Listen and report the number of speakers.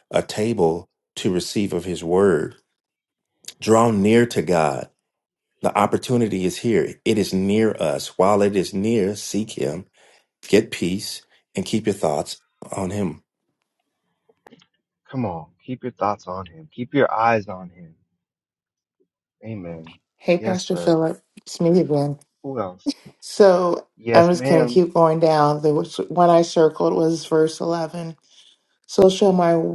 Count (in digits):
3